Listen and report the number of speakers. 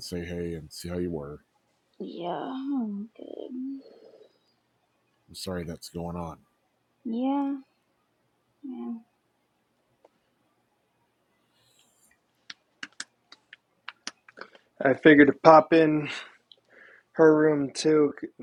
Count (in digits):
3